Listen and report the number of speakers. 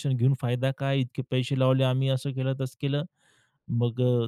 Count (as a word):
one